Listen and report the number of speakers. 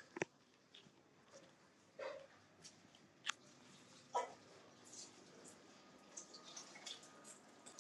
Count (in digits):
0